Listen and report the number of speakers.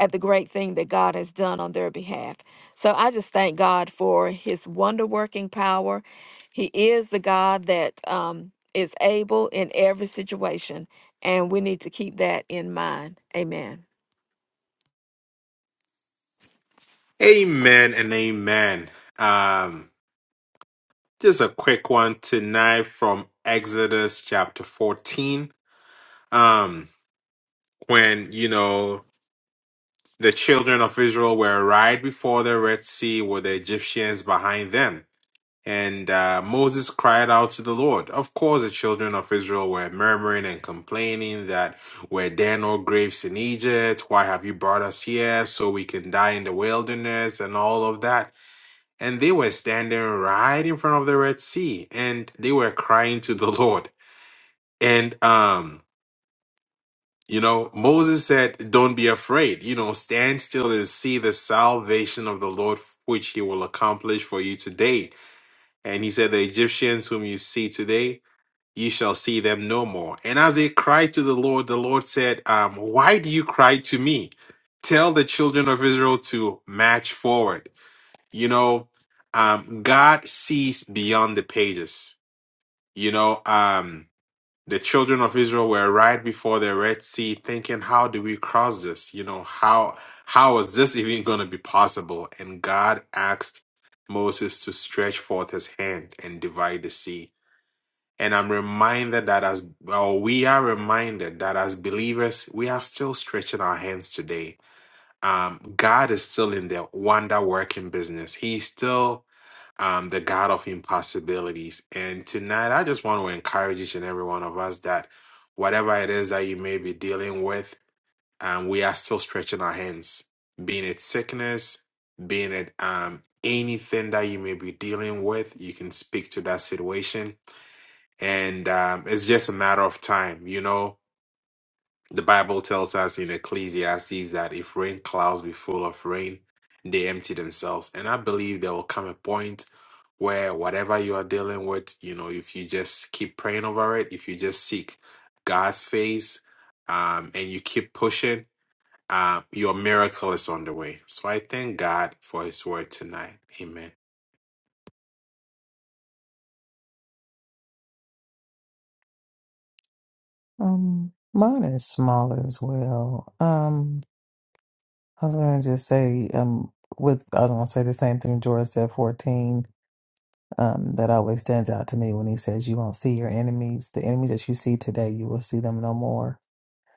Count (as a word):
three